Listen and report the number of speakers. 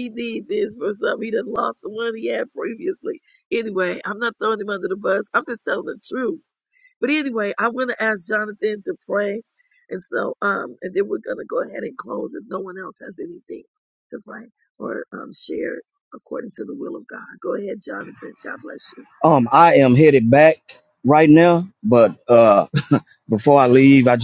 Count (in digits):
2